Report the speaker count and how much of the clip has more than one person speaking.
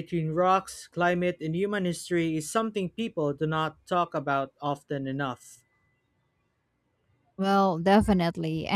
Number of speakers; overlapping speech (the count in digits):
2, no overlap